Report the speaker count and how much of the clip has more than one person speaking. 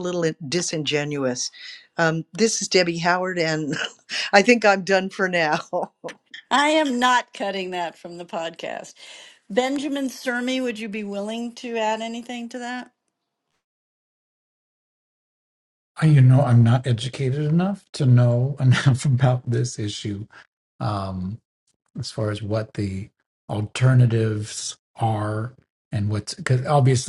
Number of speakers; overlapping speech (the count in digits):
3, no overlap